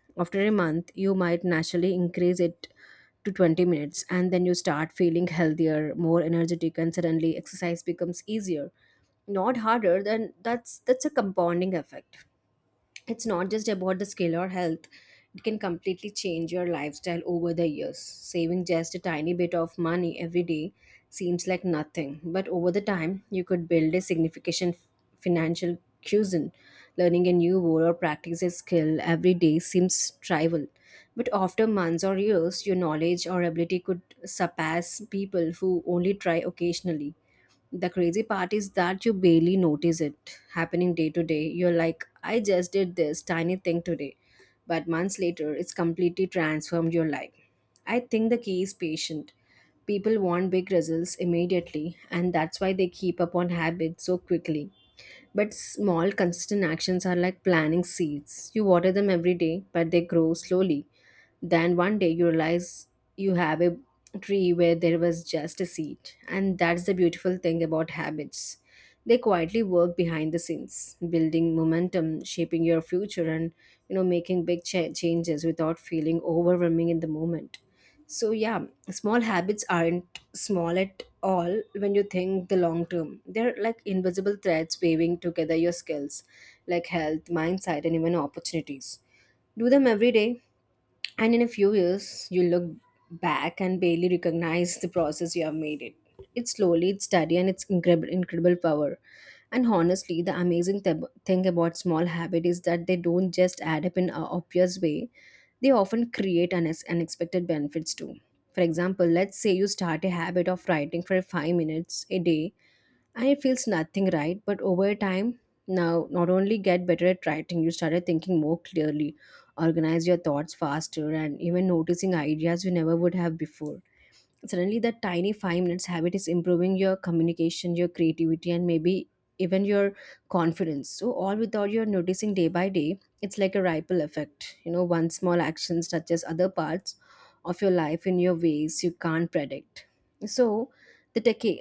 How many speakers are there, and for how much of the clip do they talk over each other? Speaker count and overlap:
1, no overlap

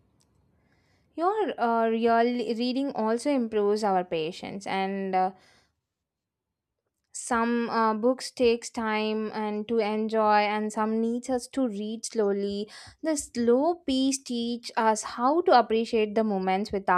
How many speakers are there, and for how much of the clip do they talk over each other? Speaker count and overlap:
1, no overlap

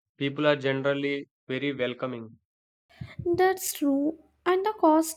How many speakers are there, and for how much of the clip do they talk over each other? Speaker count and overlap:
2, no overlap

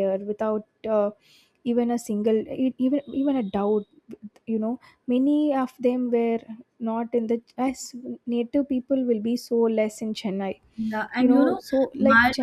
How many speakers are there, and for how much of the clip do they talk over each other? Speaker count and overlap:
2, about 7%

